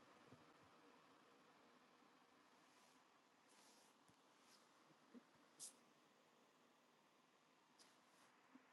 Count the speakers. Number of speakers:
zero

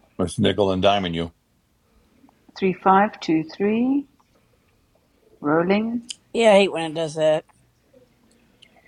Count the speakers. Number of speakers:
three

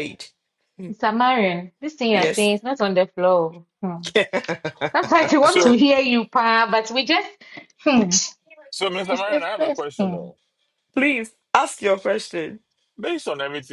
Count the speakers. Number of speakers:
three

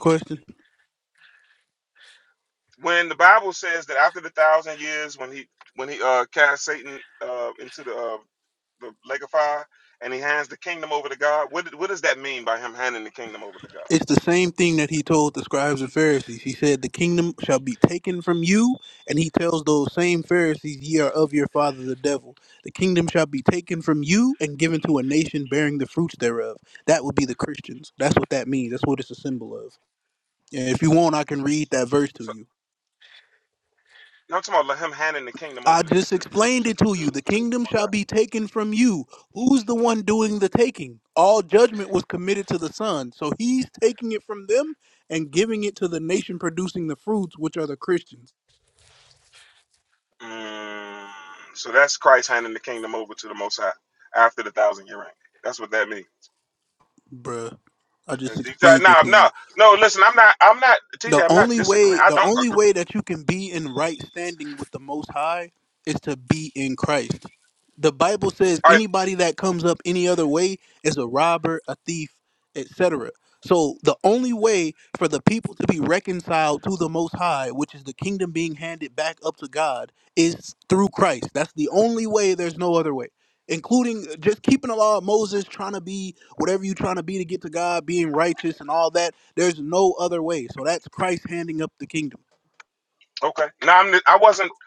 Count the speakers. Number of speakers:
two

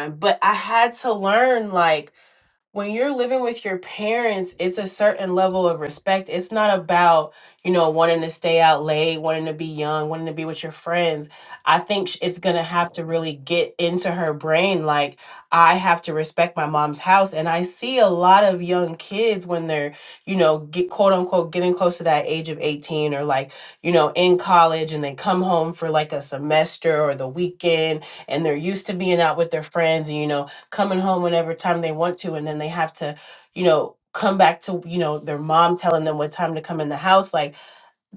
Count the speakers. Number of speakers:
one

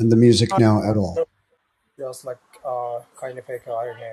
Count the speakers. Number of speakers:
two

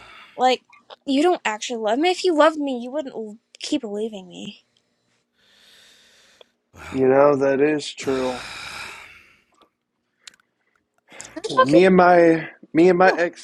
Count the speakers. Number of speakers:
three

